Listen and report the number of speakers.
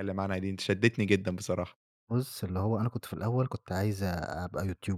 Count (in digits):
2